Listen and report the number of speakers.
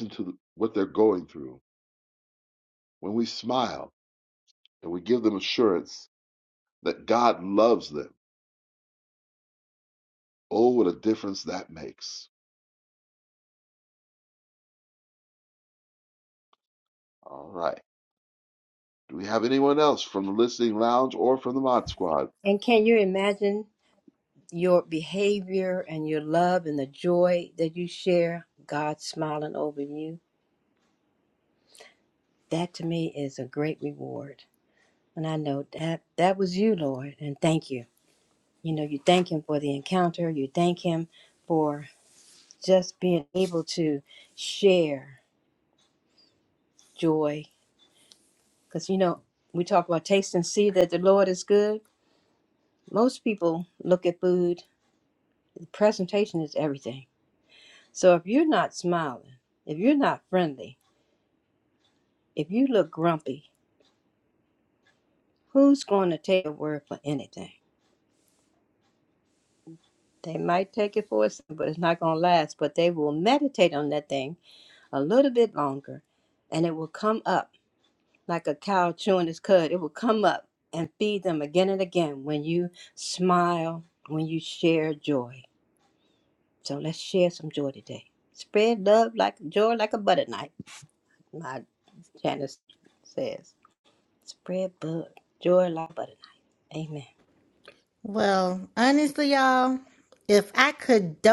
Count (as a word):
three